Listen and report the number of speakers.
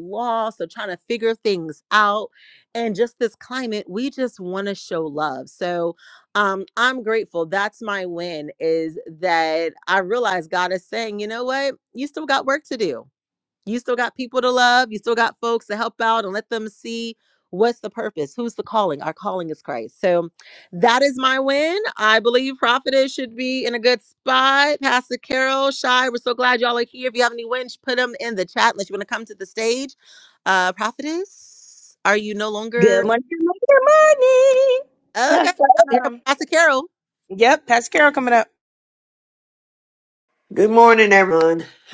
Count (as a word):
three